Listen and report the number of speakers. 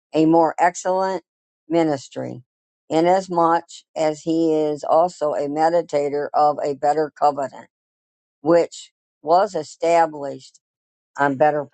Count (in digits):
1